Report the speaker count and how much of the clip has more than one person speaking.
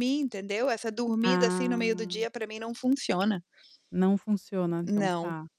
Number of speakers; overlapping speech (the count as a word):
two, about 25%